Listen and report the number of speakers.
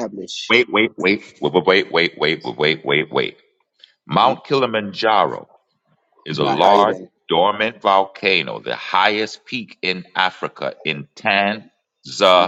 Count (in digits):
2